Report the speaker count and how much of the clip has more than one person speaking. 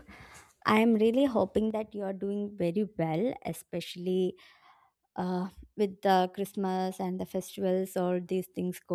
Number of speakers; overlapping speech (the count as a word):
one, no overlap